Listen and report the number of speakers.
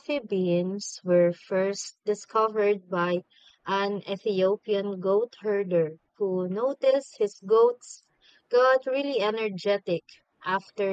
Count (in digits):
1